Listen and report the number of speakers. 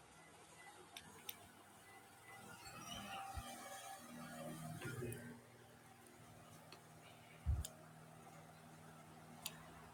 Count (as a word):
zero